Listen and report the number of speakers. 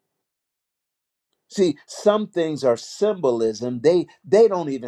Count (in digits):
1